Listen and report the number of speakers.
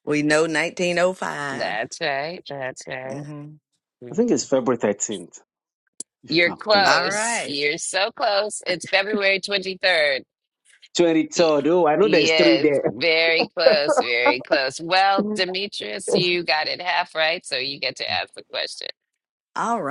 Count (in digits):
3